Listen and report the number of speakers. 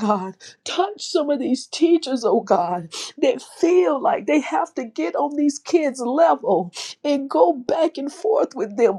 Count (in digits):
1